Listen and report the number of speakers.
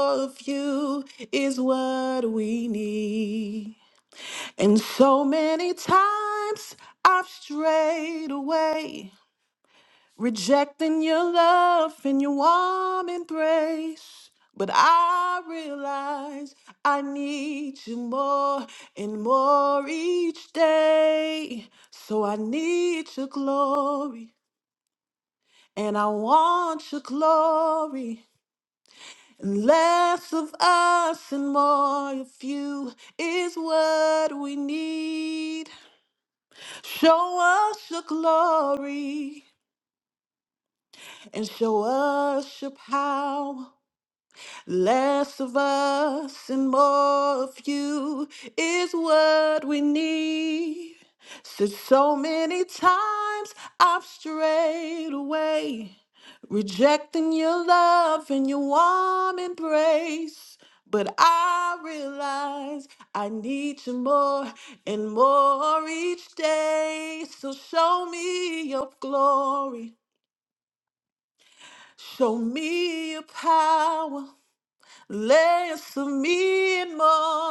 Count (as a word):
one